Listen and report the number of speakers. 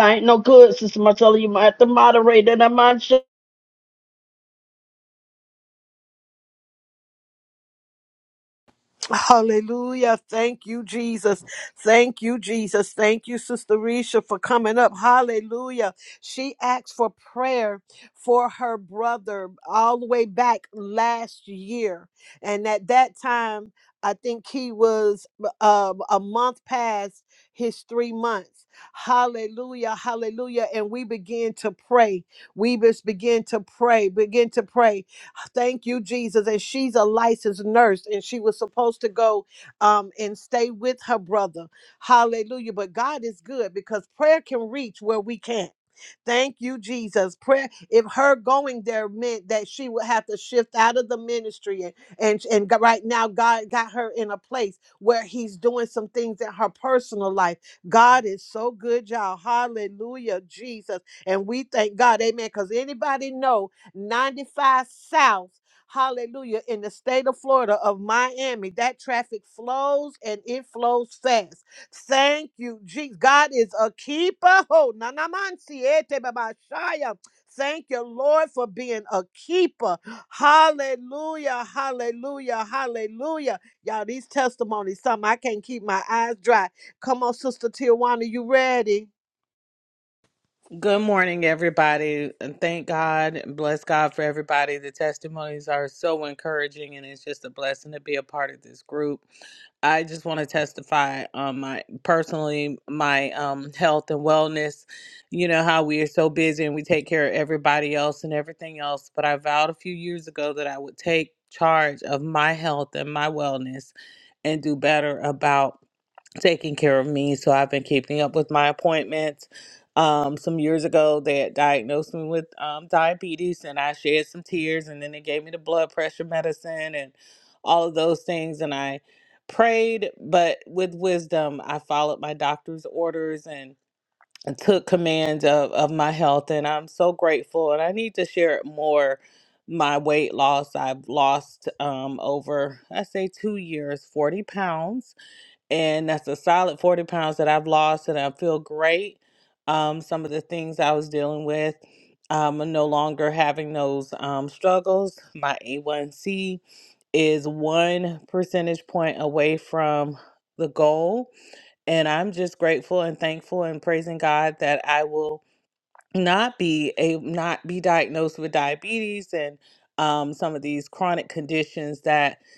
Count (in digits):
3